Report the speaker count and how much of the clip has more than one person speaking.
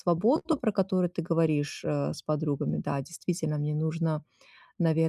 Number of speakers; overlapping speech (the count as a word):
one, no overlap